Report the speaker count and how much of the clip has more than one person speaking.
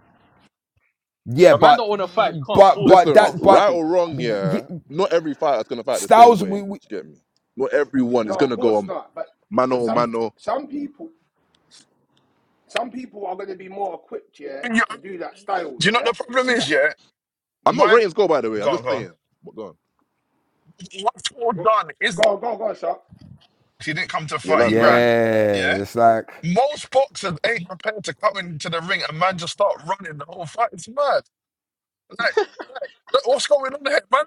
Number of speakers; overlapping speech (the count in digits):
5, about 21%